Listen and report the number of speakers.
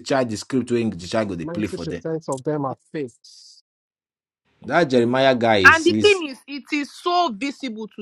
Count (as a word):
three